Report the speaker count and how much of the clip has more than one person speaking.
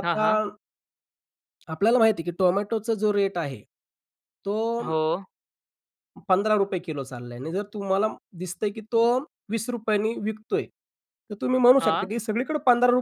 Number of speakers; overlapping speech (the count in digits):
2, about 4%